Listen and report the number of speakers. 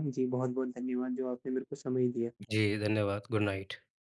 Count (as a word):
two